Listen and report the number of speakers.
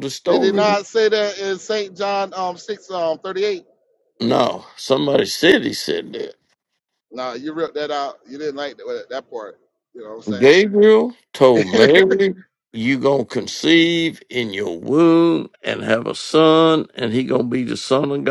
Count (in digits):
2